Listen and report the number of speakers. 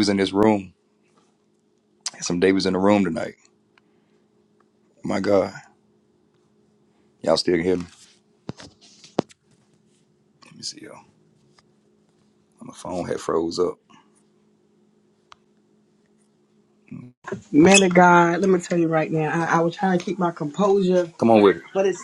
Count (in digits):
2